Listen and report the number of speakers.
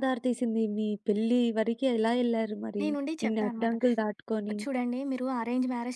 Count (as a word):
two